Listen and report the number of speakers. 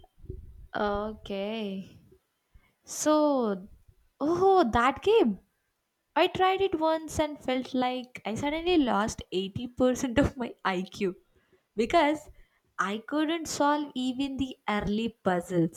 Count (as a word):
one